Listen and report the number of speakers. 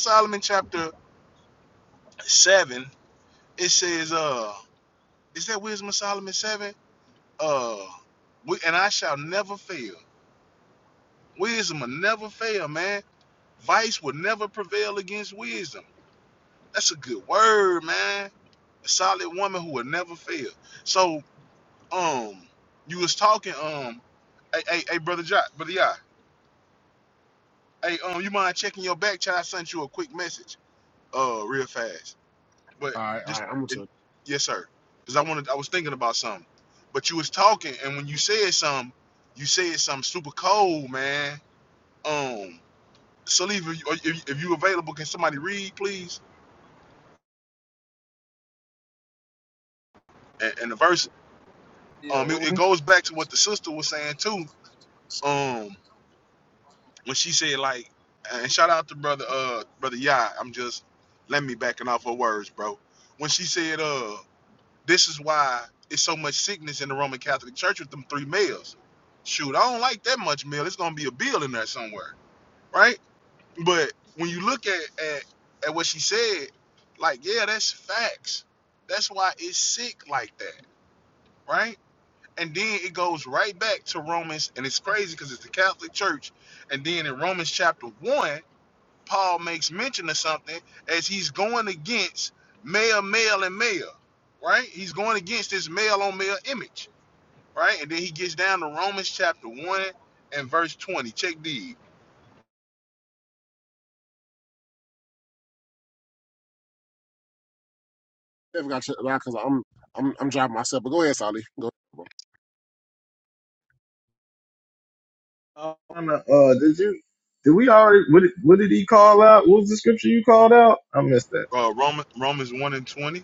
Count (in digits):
3